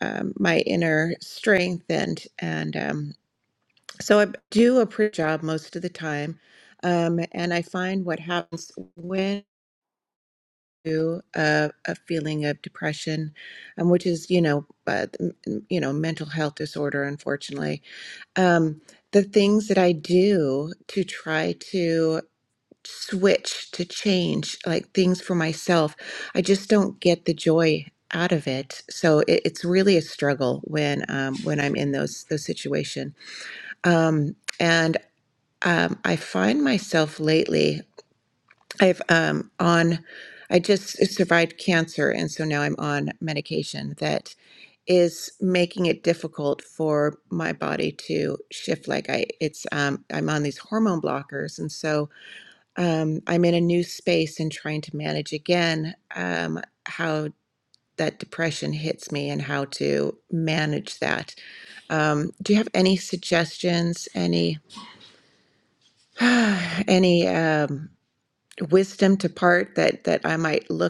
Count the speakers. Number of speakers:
1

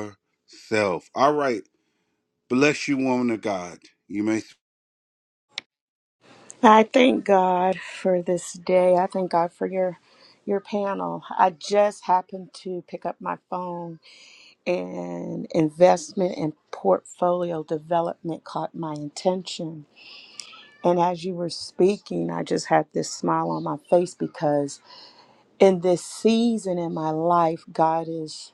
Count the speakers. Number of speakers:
2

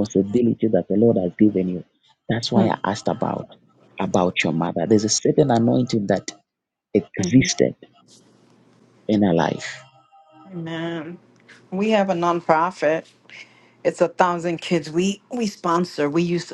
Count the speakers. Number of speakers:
2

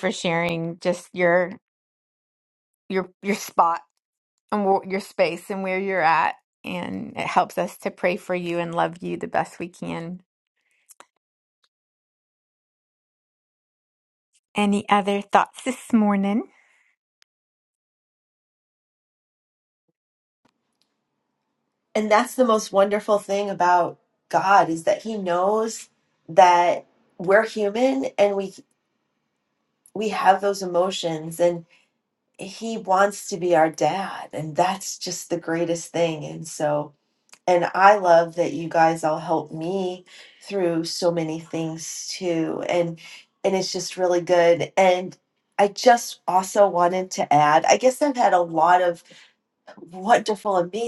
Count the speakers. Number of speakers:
2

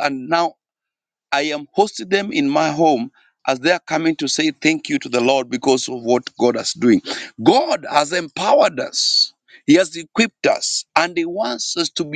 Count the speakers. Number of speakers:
1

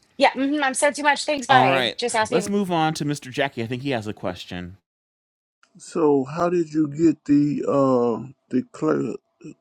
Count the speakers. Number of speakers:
3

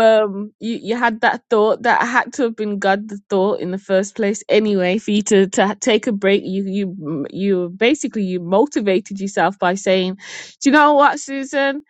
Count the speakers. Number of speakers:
1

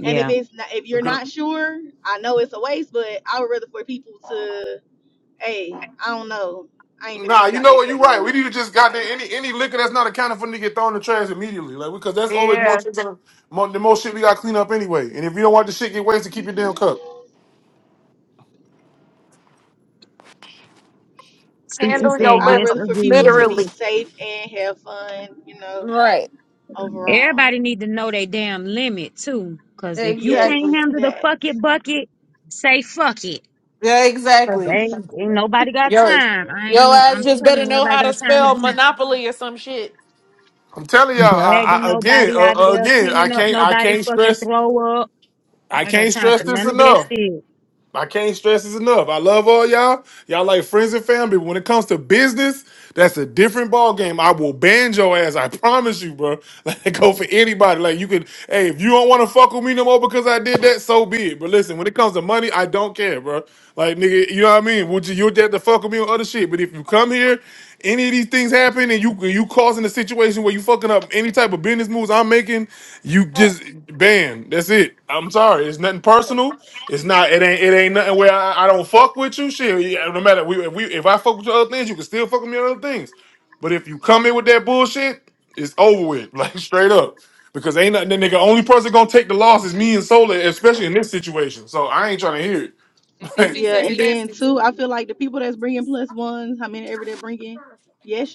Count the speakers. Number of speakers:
4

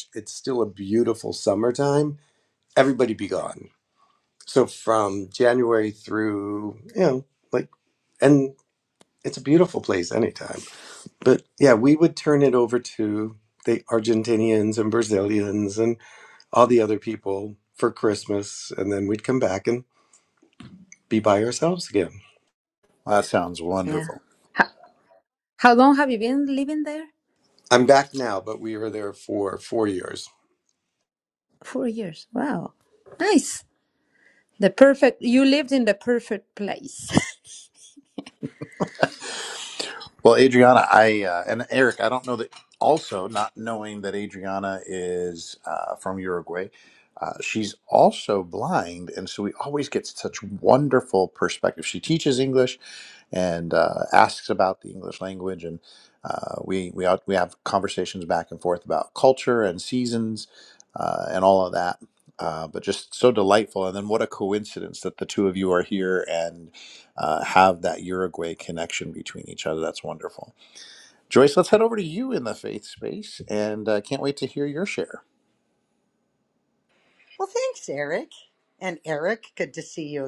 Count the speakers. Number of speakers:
4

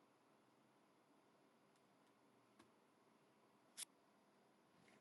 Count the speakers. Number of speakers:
0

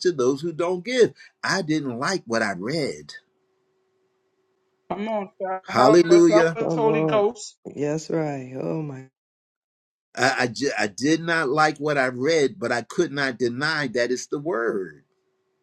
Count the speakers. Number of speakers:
3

